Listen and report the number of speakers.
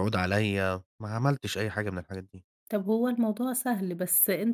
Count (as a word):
two